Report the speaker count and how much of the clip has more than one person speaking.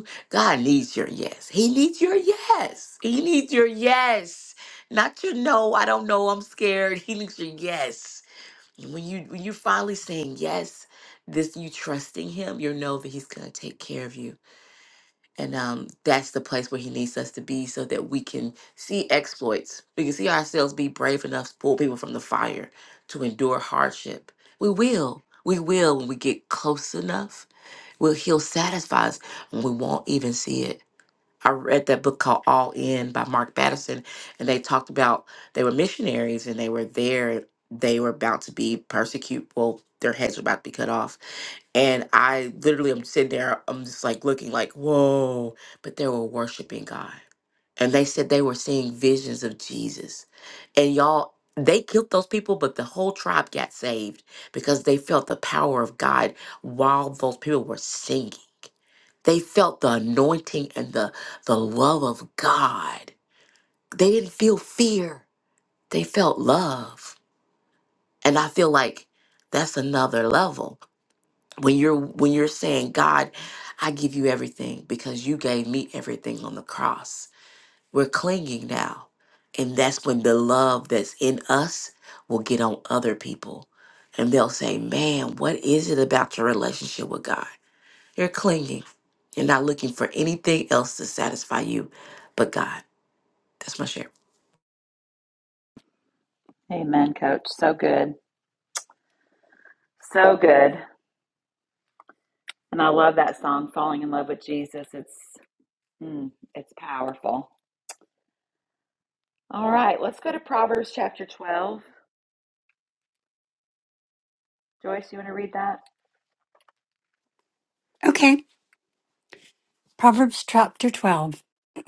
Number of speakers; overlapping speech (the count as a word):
three, no overlap